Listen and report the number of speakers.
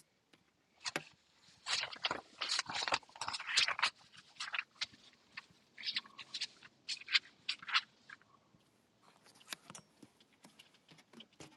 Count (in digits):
0